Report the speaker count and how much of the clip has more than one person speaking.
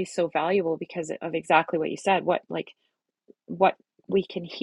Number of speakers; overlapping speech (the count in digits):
1, no overlap